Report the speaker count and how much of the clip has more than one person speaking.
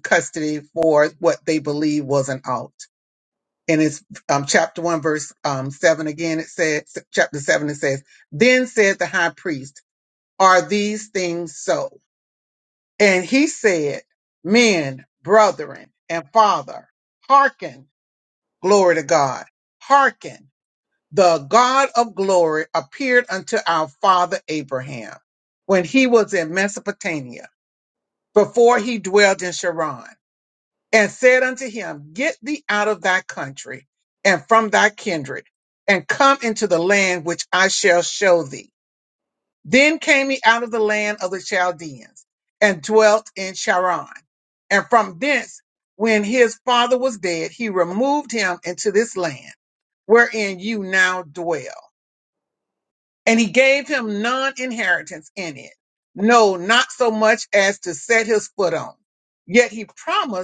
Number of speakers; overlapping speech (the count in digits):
1, no overlap